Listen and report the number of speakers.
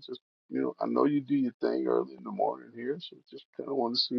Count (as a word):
one